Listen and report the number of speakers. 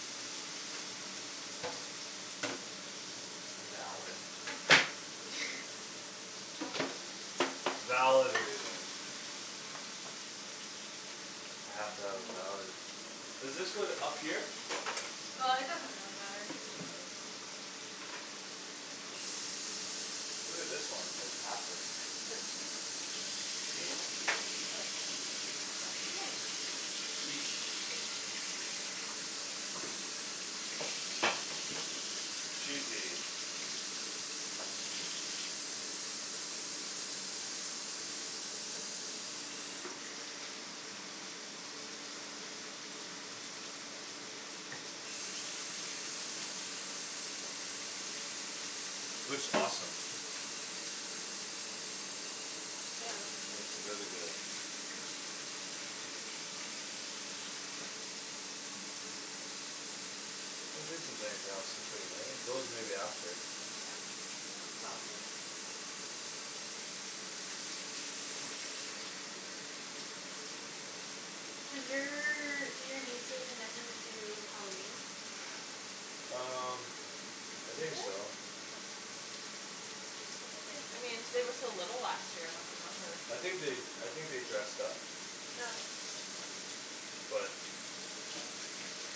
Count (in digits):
3